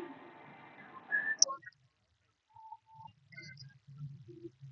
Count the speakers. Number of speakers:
zero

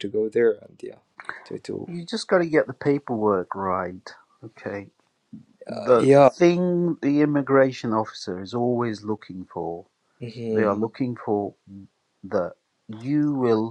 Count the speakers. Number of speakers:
two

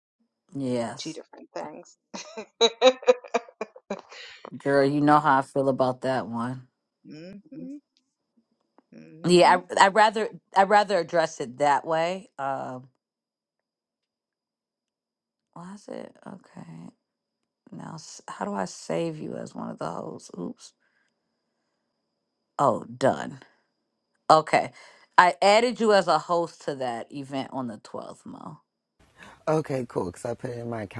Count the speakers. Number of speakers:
three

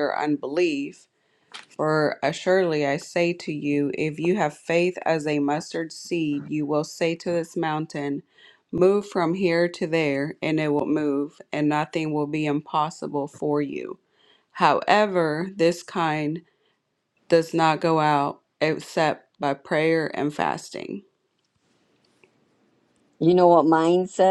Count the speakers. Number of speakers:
two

